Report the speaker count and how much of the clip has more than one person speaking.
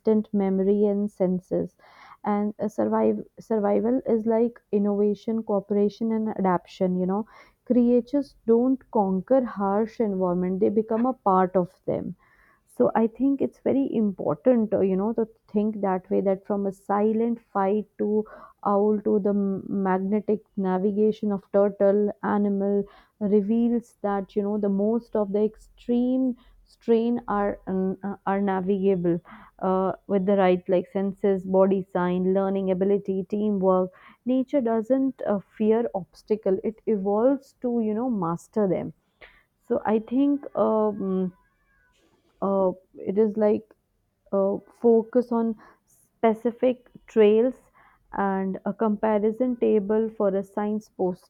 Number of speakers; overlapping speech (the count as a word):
one, no overlap